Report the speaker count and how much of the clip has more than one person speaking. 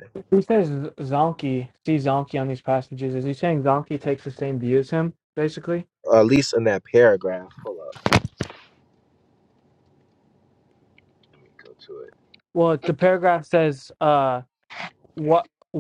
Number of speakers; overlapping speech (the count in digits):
2, no overlap